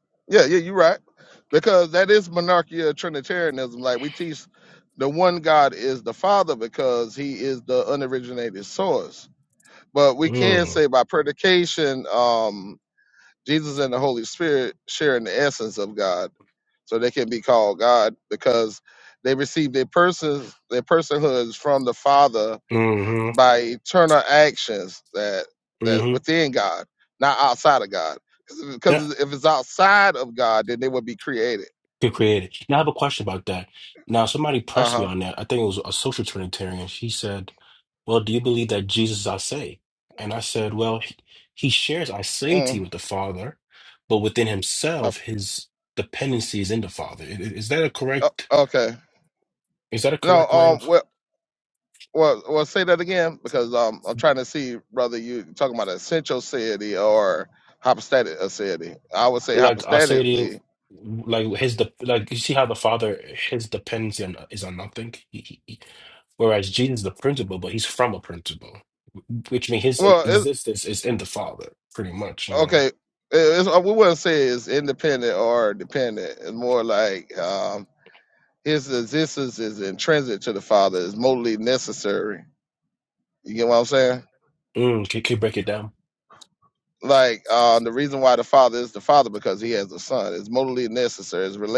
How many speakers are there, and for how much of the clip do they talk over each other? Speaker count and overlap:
two, about 4%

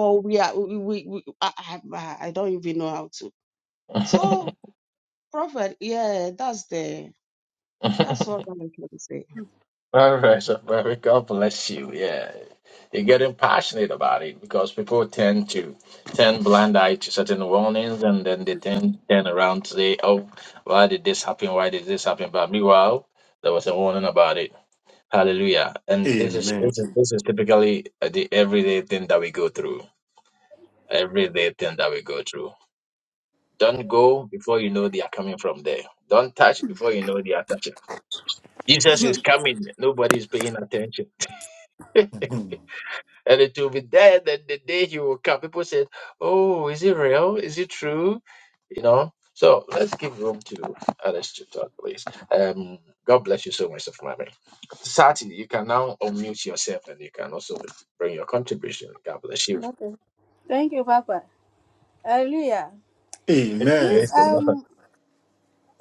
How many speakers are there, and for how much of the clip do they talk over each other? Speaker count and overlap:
four, about 3%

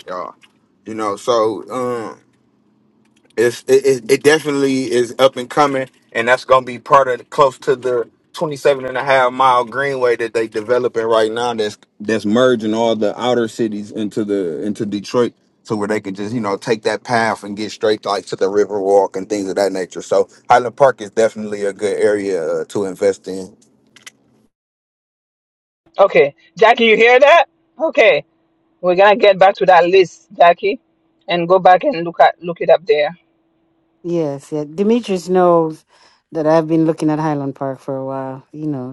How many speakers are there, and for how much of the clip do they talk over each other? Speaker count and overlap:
three, no overlap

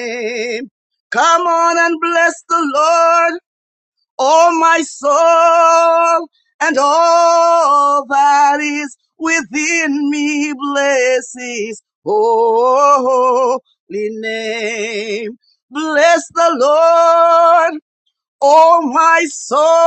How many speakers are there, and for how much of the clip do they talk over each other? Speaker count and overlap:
one, no overlap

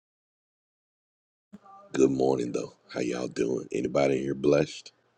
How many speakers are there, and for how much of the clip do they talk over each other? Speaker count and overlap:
one, no overlap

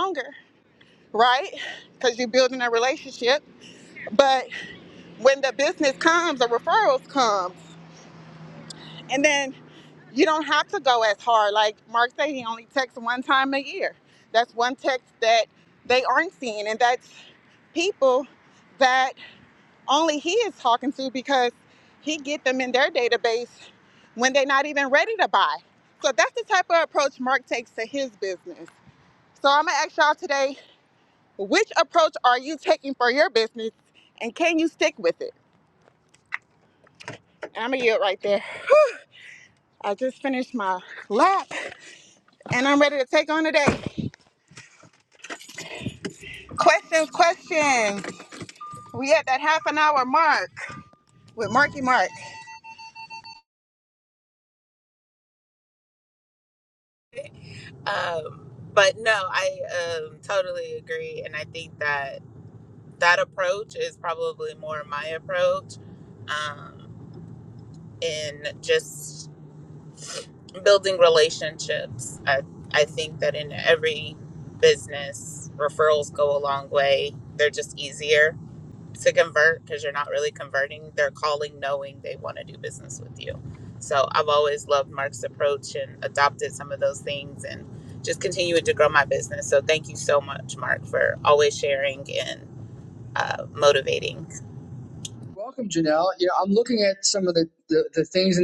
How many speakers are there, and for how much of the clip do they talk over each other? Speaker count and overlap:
three, no overlap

